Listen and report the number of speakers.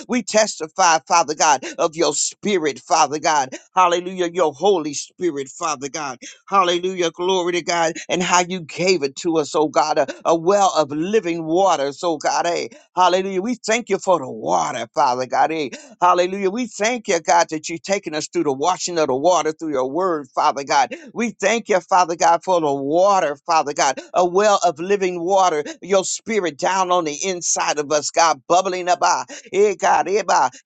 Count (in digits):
1